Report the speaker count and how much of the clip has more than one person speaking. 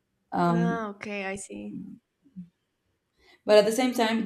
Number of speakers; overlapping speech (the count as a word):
two, about 8%